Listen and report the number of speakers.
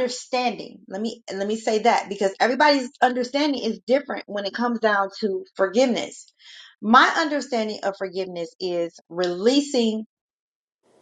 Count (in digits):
1